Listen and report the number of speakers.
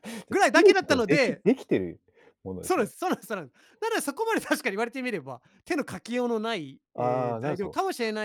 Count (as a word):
two